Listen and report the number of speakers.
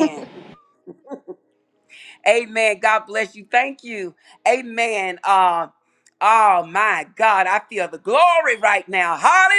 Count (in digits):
1